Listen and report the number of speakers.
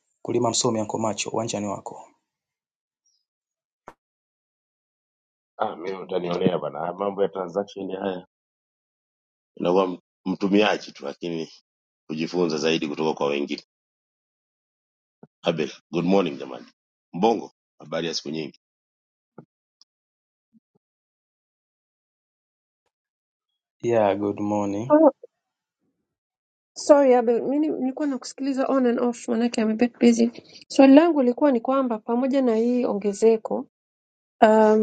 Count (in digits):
3